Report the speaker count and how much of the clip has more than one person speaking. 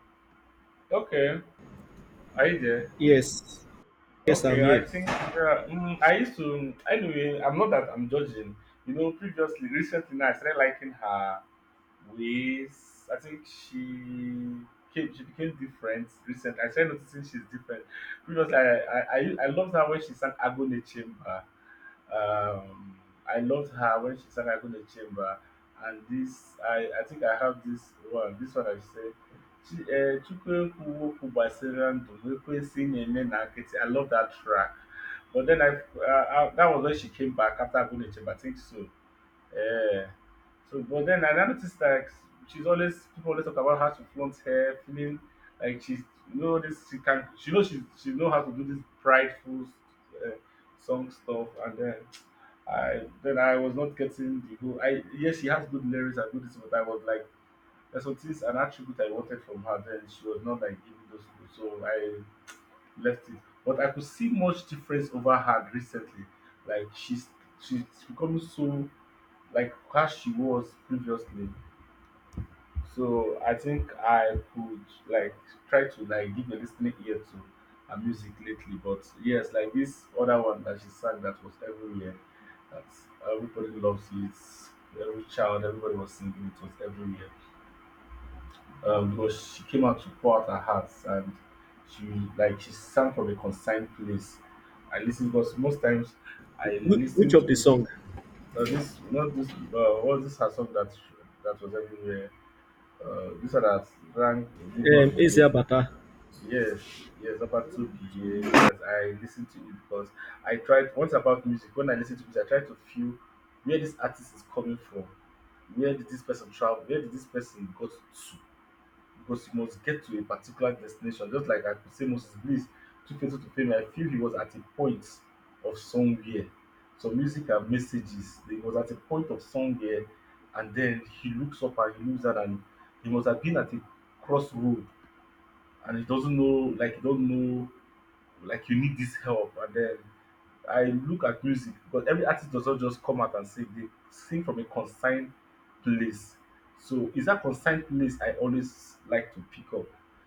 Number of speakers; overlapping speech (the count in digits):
2, about 1%